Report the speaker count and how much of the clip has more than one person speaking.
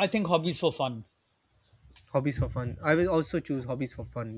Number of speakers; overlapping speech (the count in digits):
2, no overlap